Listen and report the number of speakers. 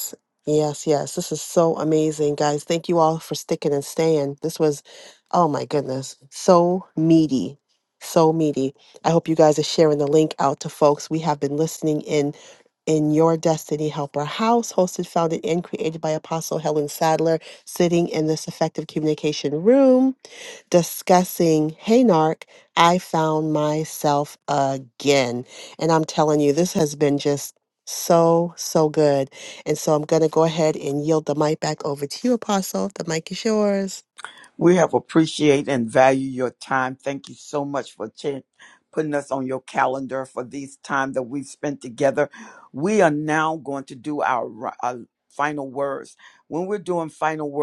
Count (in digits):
2